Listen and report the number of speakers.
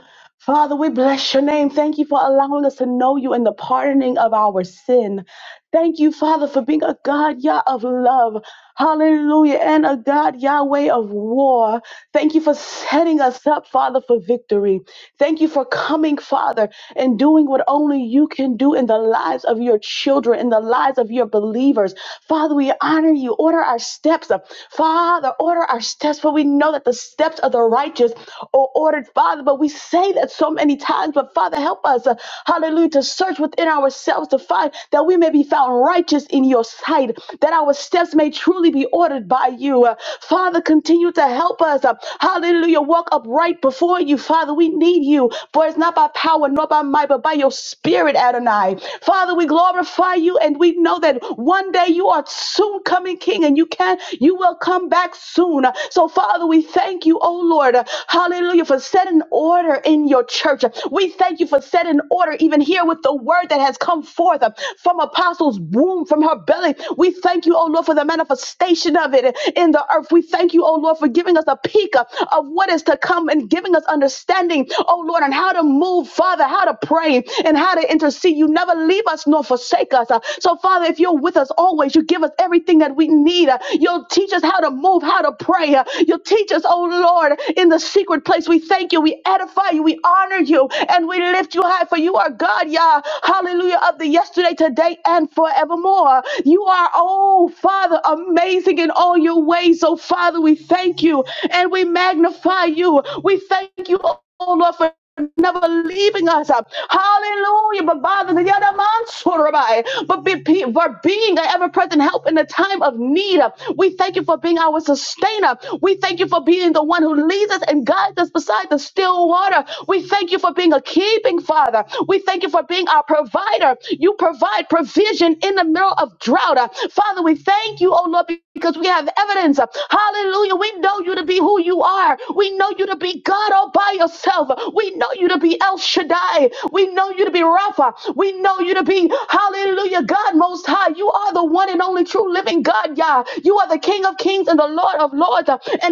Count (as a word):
one